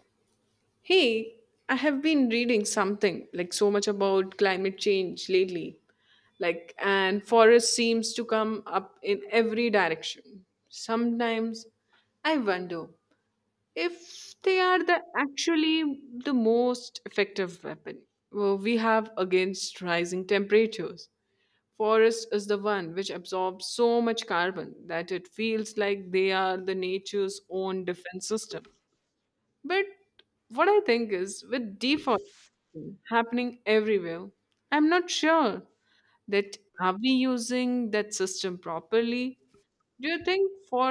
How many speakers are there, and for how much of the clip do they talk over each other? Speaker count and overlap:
1, no overlap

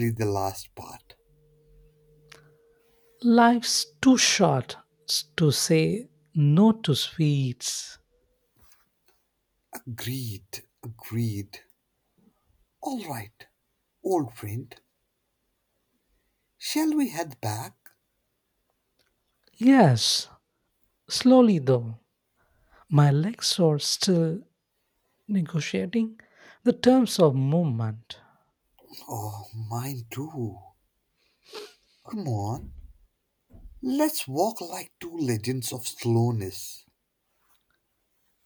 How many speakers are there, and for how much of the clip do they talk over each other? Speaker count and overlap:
2, no overlap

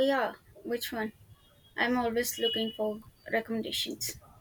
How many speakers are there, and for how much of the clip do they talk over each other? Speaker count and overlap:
1, no overlap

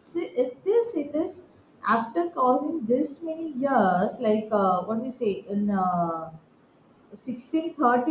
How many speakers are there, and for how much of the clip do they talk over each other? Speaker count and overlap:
1, no overlap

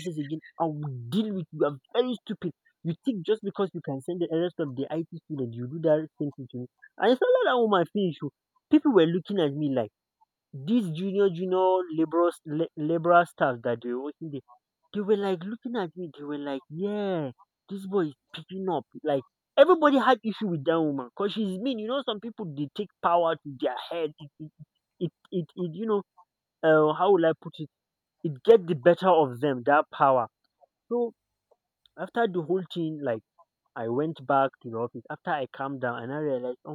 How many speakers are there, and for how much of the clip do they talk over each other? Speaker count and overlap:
1, no overlap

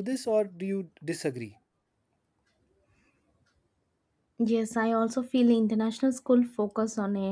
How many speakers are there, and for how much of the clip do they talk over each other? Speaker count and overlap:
2, no overlap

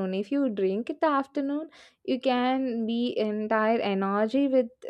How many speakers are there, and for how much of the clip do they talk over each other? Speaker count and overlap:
1, no overlap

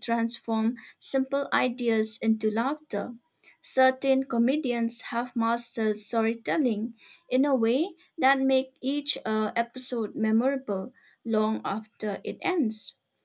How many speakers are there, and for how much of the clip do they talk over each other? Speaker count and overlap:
1, no overlap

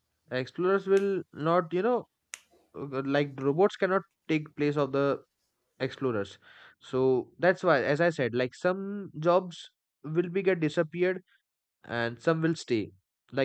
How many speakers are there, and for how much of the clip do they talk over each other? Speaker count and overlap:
1, no overlap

